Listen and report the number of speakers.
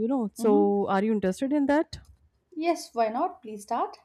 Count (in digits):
2